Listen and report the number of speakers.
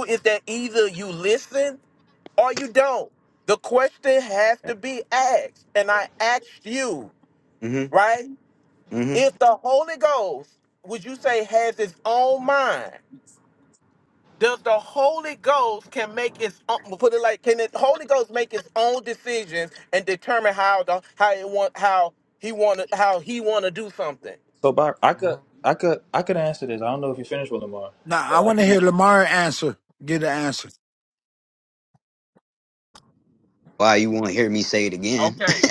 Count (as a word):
four